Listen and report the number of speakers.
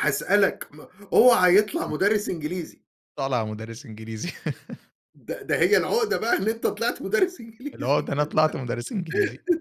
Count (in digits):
2